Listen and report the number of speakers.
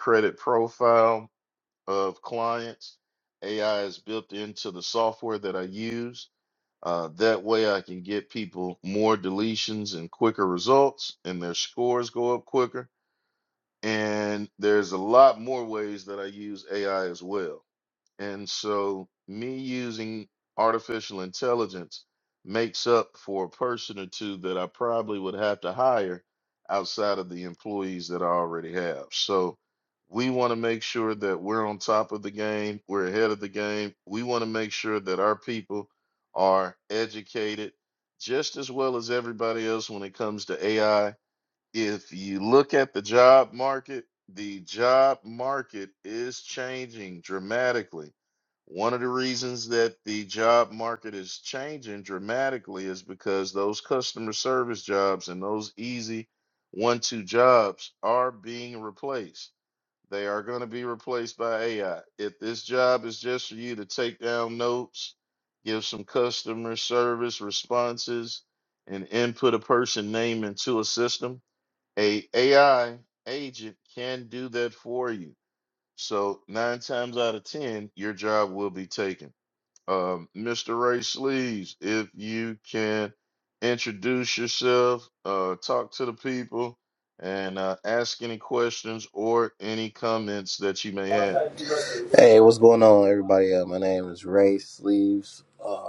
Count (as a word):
two